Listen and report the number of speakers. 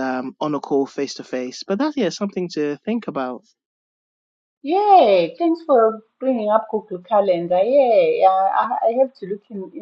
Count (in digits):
2